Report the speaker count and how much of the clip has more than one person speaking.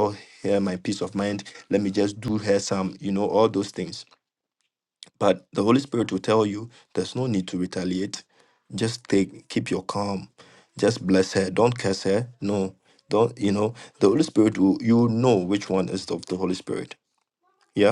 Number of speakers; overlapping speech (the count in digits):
1, no overlap